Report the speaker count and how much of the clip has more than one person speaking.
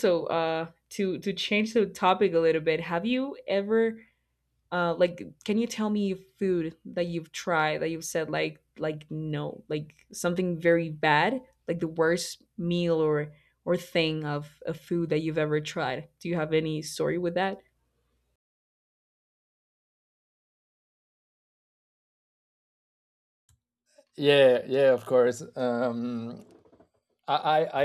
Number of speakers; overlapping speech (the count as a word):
two, no overlap